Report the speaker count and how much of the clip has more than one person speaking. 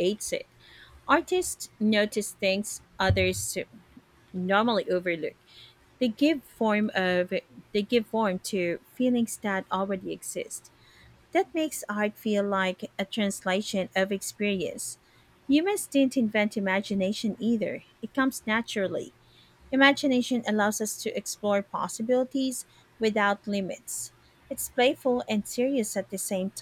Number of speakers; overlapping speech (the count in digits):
1, no overlap